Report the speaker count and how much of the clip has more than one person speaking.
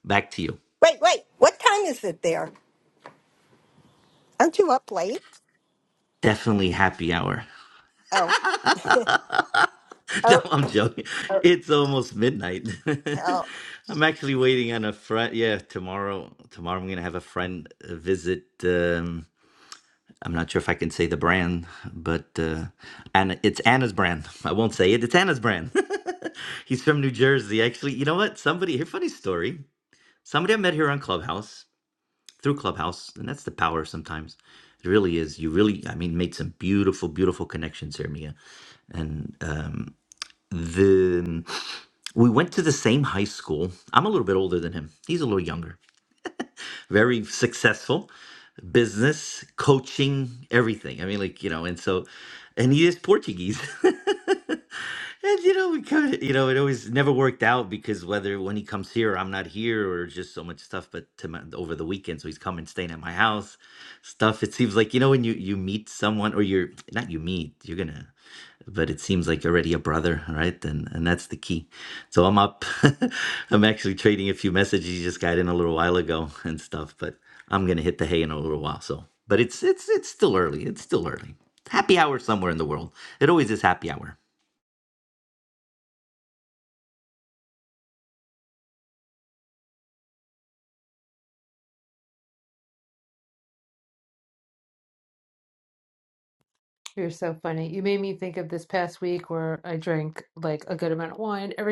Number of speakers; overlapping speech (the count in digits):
3, under 1%